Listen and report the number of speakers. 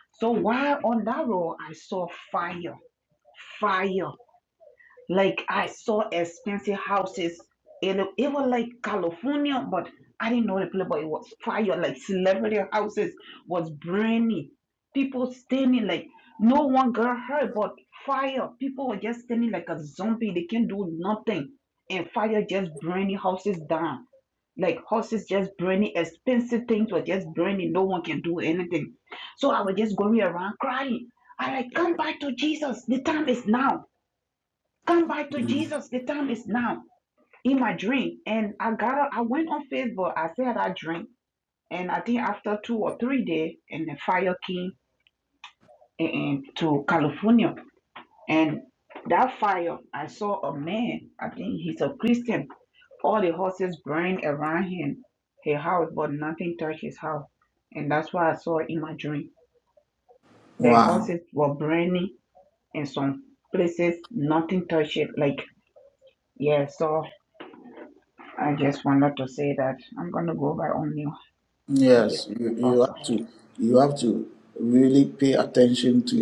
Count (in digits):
2